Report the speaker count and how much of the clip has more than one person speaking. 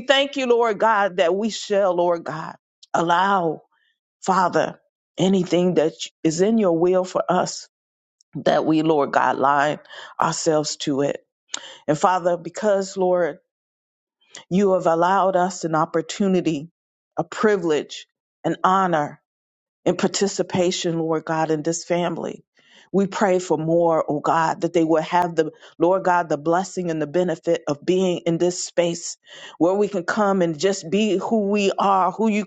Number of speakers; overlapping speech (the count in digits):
1, no overlap